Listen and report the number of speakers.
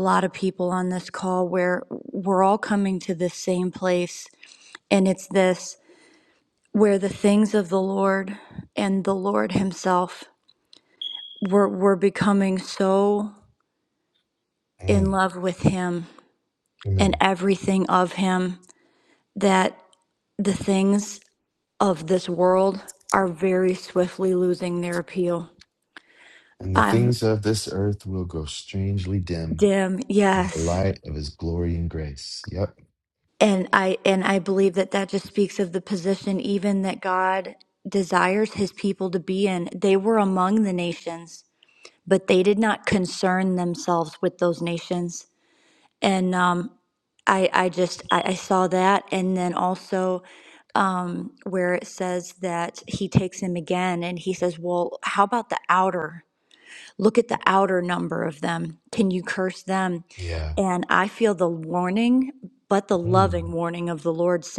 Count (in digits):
2